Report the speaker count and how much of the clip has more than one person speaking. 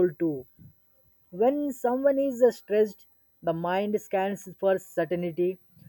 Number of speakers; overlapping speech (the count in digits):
1, no overlap